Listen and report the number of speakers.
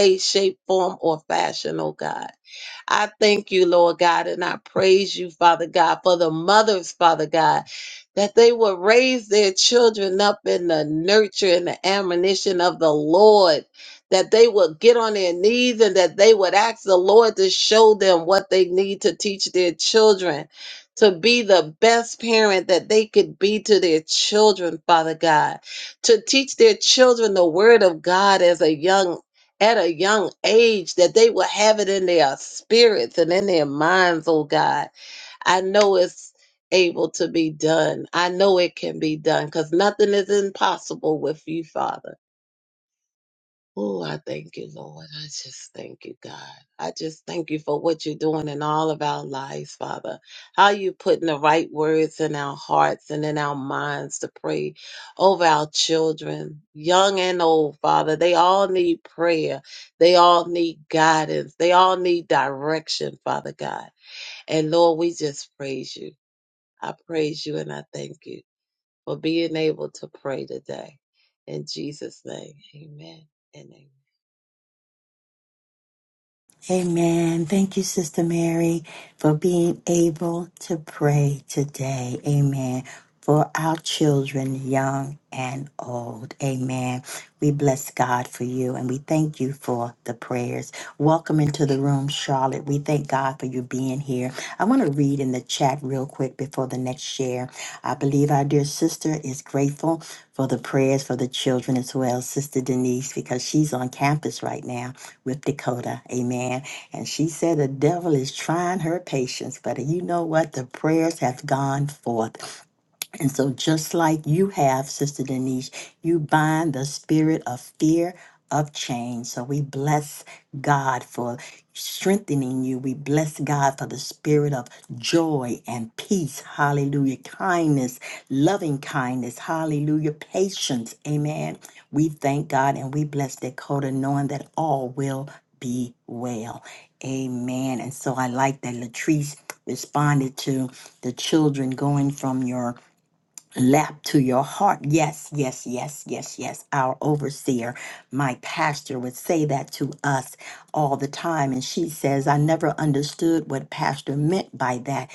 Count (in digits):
2